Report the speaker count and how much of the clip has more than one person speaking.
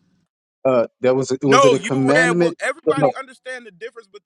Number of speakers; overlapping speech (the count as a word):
two, about 39%